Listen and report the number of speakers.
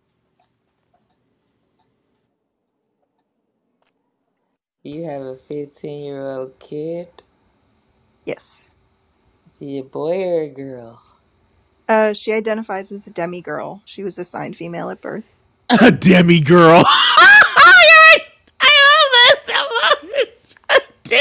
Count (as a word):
three